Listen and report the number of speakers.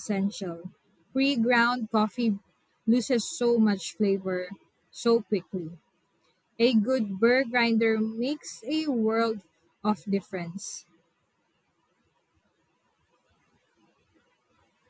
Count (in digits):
1